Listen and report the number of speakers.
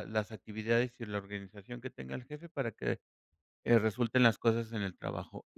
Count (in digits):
1